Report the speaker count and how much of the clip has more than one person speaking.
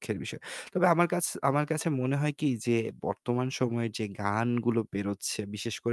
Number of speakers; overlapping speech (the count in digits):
1, no overlap